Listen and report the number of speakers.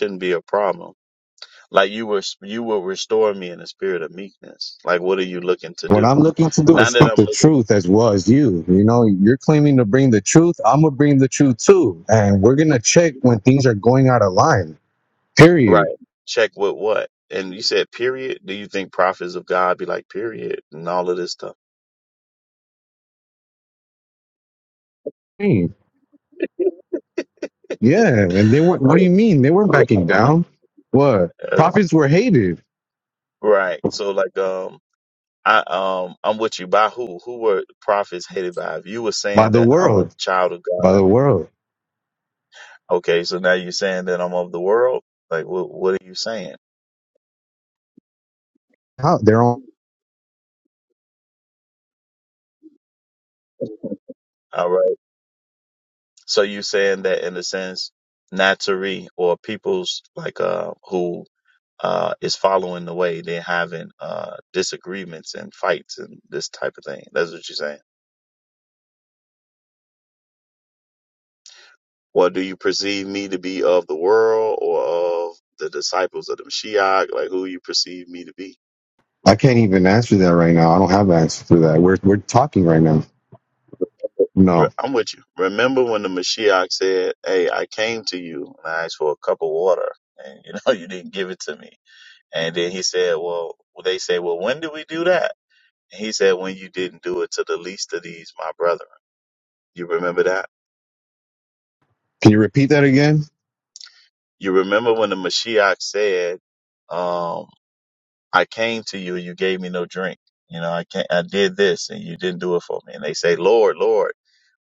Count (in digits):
2